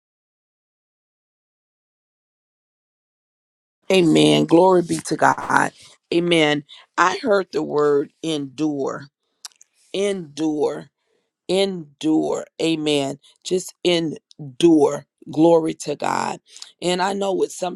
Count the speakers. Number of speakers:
1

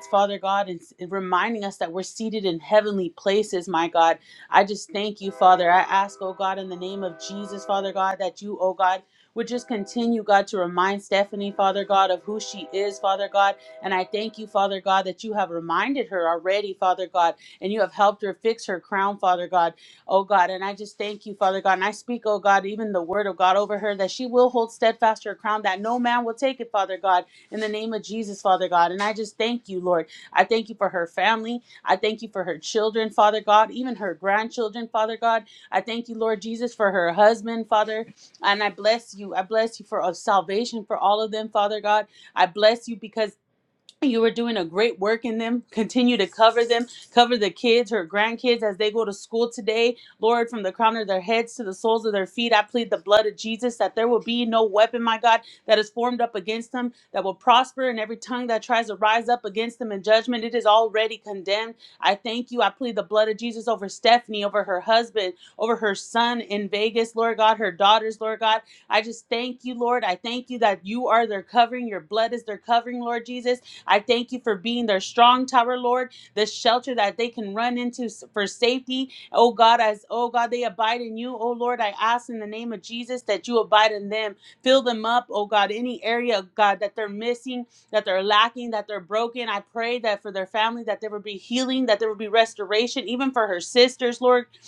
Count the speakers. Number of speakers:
1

